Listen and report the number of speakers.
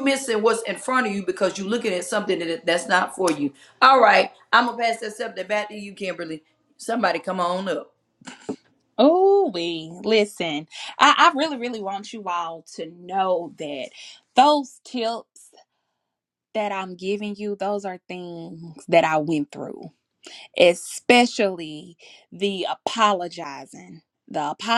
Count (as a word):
two